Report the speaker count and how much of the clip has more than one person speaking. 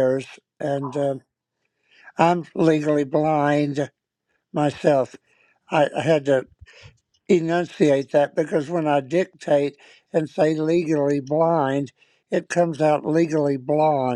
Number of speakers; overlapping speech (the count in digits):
1, no overlap